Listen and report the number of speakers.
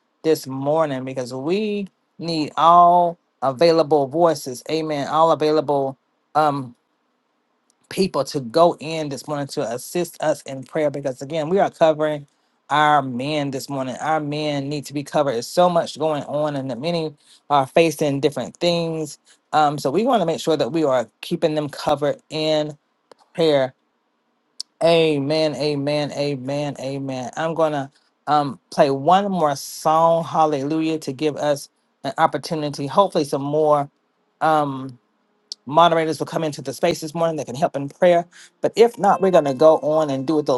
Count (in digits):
1